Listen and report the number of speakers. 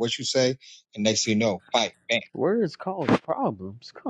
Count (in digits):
2